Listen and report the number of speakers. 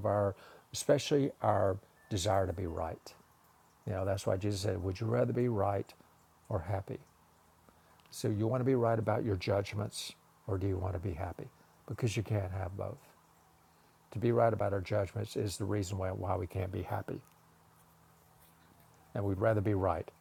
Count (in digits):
1